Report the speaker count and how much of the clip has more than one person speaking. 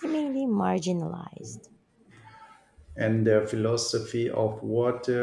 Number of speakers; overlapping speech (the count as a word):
two, no overlap